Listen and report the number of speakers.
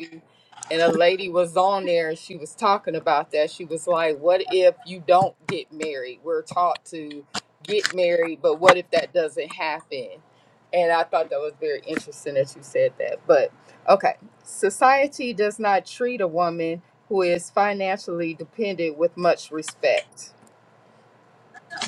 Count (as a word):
one